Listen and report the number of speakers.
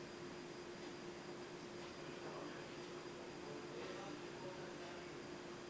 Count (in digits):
0